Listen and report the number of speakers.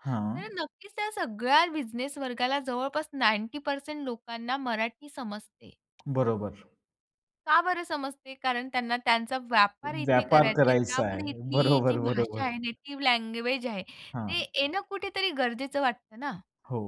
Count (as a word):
two